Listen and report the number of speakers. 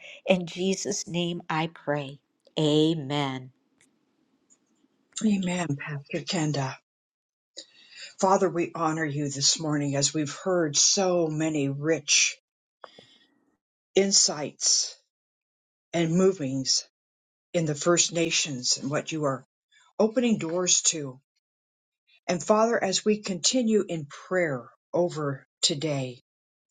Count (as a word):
two